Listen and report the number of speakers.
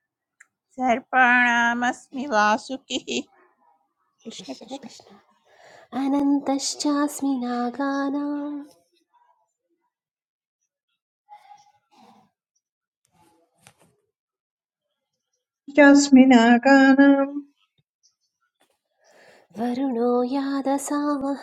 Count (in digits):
3